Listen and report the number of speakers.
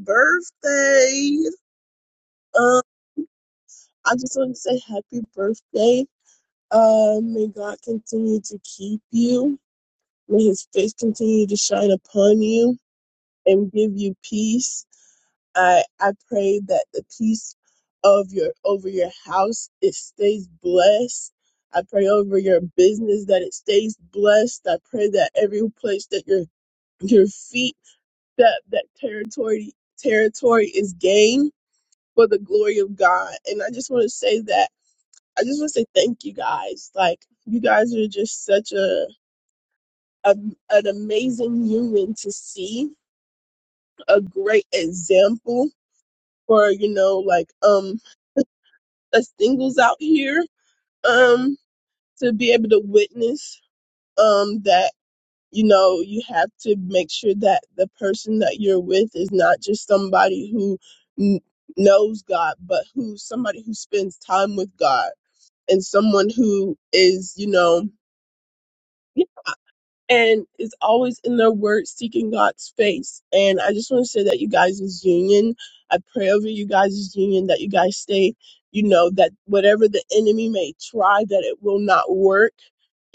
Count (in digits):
1